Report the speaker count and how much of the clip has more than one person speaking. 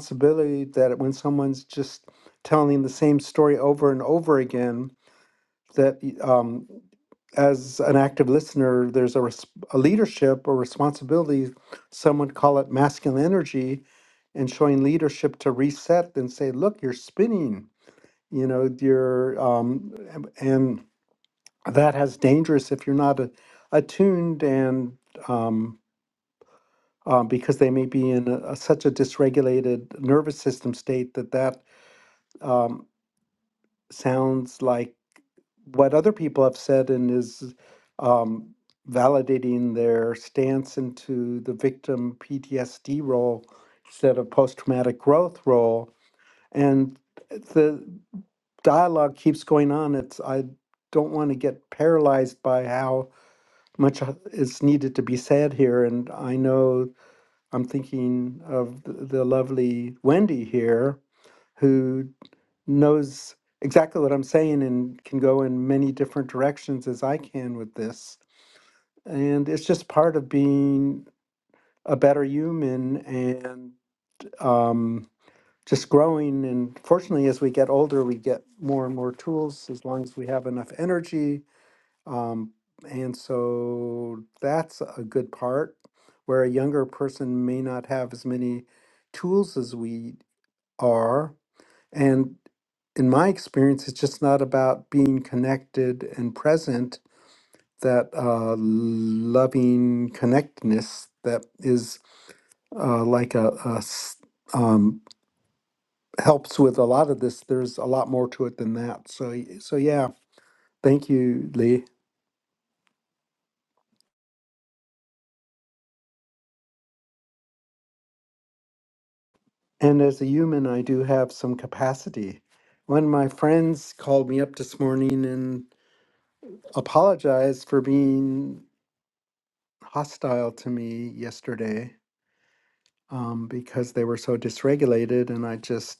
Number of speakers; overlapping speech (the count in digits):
1, no overlap